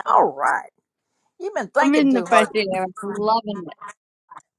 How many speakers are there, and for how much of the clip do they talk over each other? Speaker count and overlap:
2, about 17%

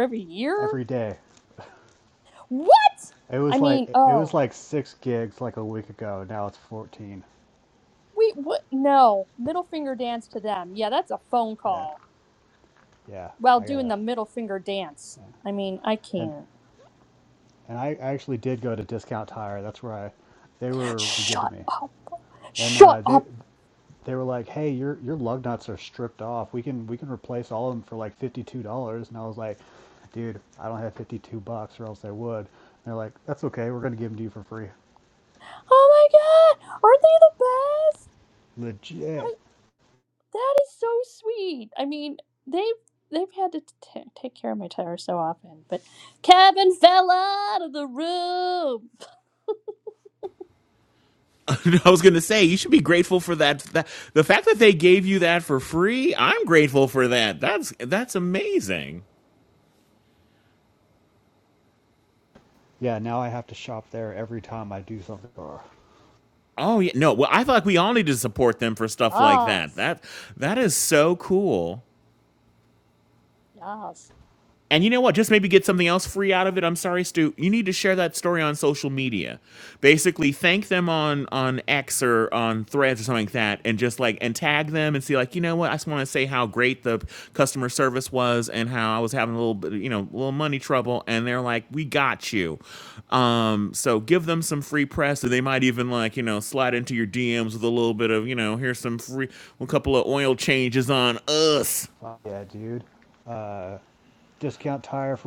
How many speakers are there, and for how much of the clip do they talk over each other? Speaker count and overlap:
3, about 4%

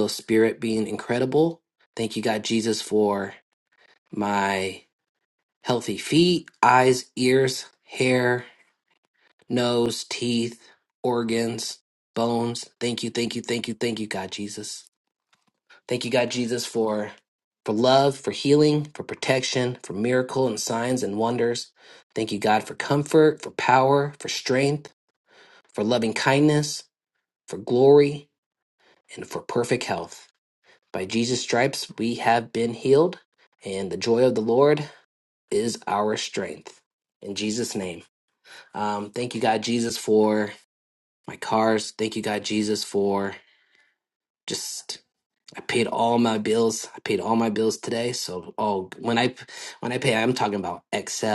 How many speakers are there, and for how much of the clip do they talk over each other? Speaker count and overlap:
1, no overlap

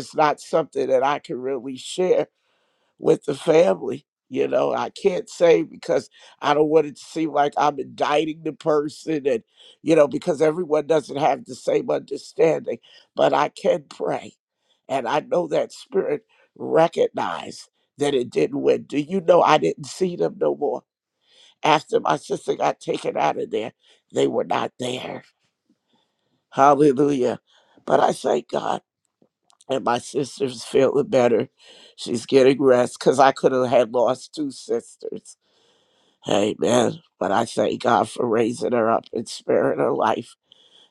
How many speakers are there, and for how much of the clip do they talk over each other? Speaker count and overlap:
1, no overlap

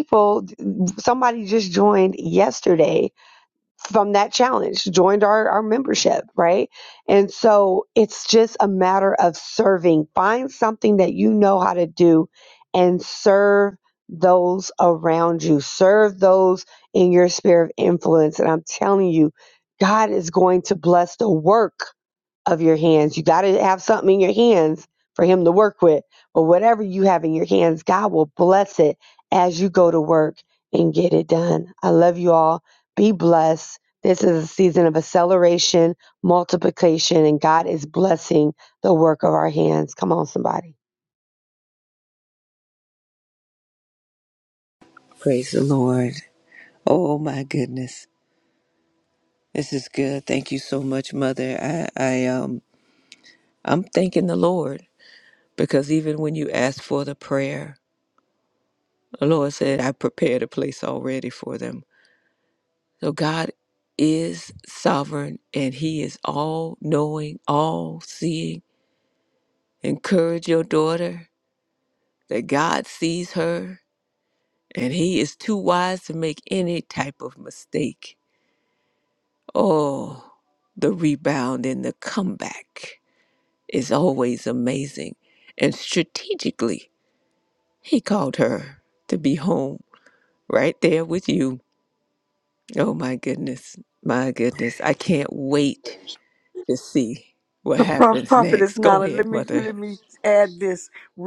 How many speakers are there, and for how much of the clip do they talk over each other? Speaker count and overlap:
3, about 2%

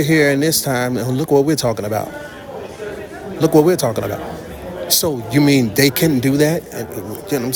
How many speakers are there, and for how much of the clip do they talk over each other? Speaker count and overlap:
1, no overlap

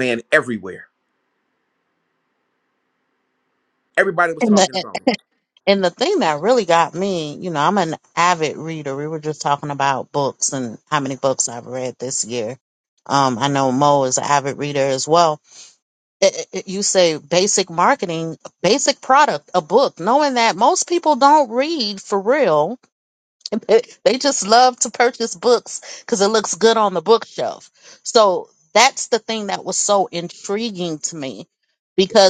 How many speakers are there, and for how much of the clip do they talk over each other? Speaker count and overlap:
2, no overlap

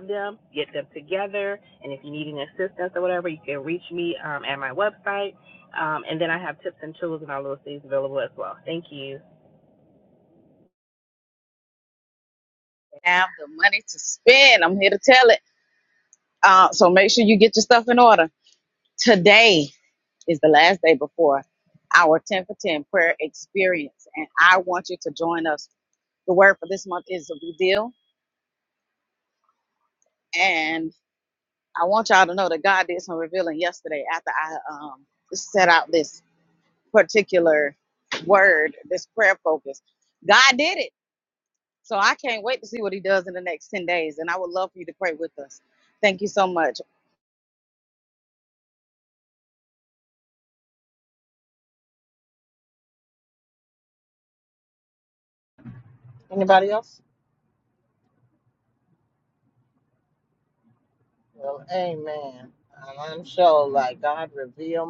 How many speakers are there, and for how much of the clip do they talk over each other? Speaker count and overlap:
3, no overlap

